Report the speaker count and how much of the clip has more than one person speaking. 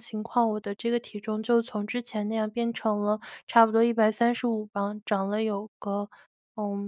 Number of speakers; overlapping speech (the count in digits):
1, no overlap